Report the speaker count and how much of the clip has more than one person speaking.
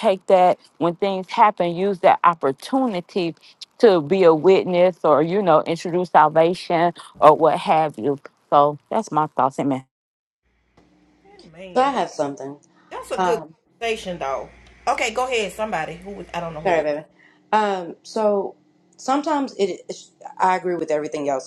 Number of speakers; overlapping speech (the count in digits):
3, about 3%